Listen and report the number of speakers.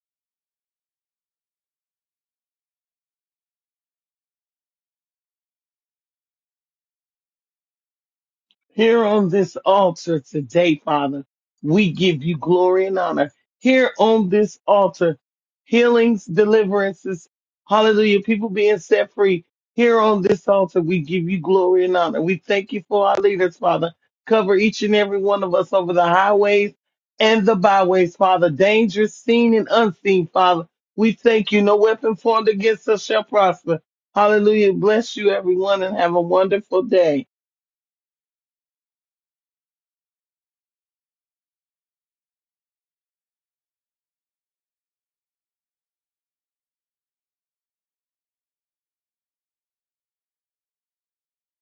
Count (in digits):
1